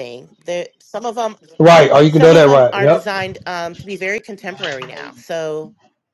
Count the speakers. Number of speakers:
two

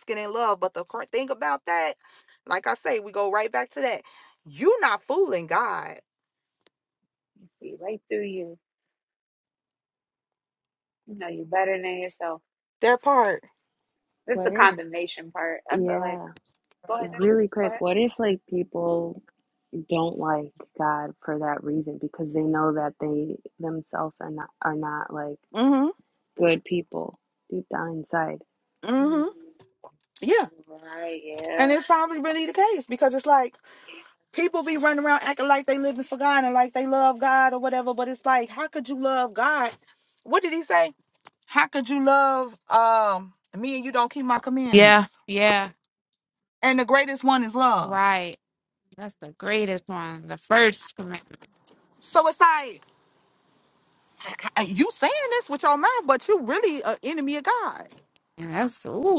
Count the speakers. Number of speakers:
three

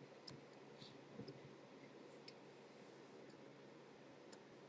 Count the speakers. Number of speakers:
zero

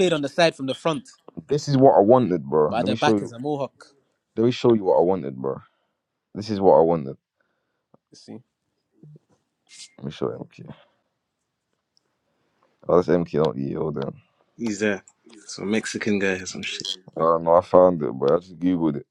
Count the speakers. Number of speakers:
three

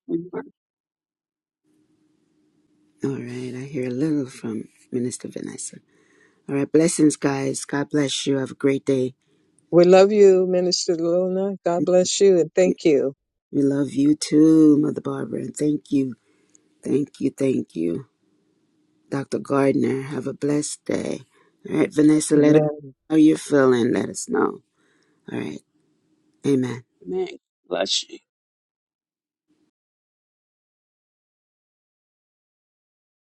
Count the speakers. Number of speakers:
three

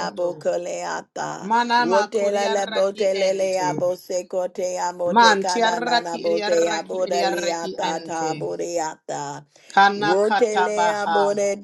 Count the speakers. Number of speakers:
two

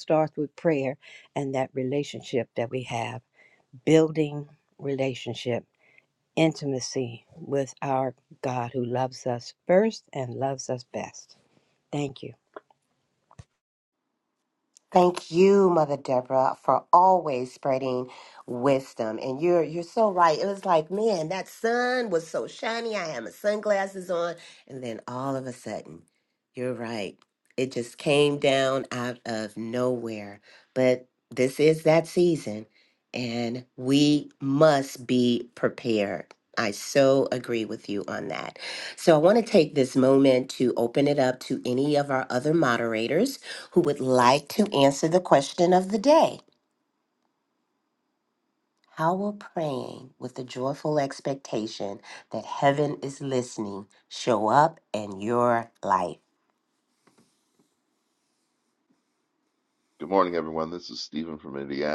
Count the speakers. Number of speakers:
three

